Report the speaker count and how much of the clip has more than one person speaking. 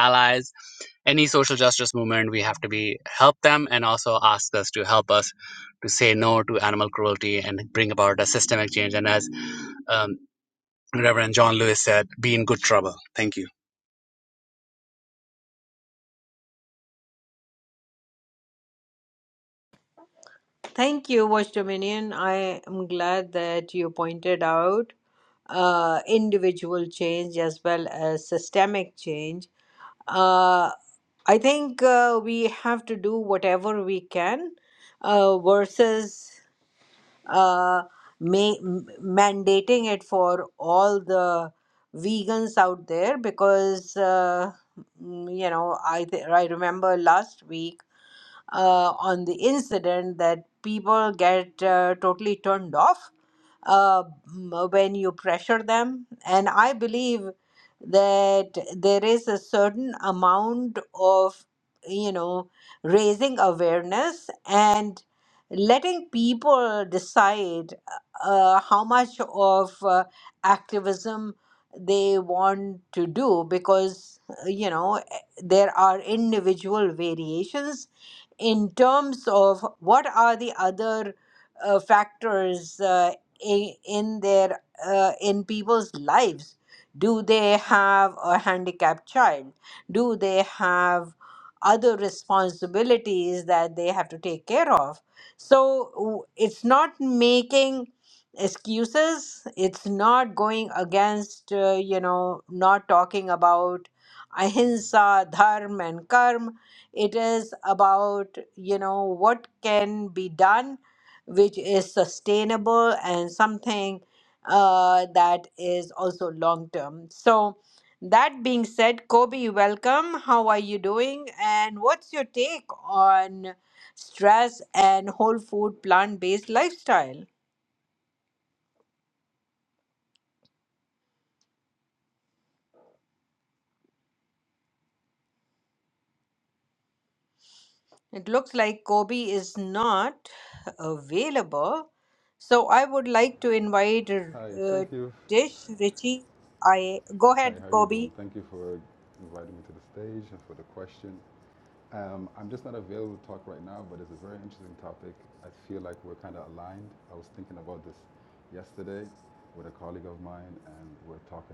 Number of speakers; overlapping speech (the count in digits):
3, about 1%